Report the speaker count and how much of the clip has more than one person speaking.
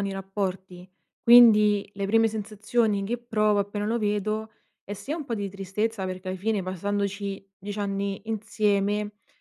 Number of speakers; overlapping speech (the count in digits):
1, no overlap